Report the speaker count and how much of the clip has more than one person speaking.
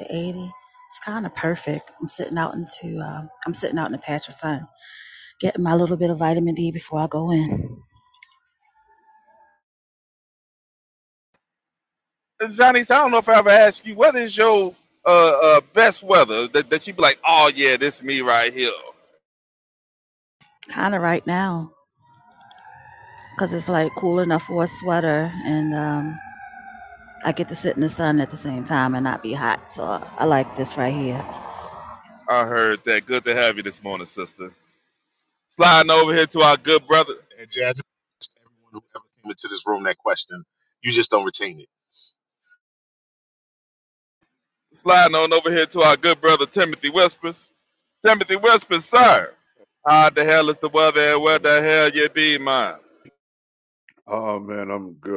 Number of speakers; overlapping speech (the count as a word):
four, under 1%